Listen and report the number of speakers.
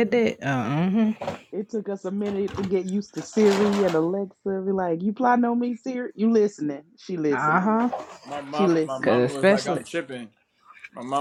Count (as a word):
three